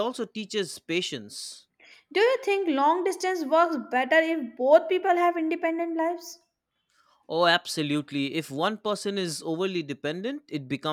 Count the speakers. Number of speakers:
two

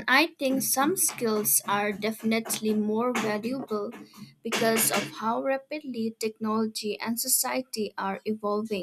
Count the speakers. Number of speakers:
one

